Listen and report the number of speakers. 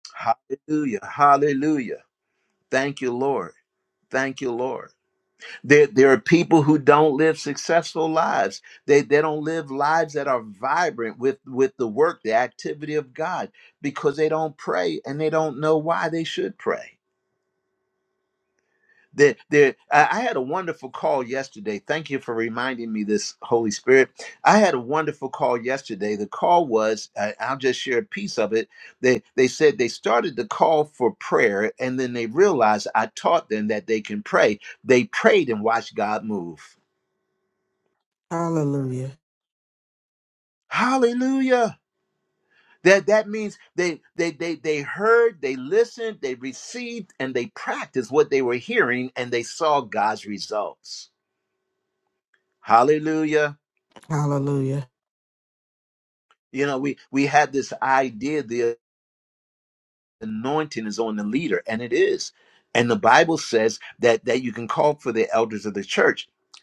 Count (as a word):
two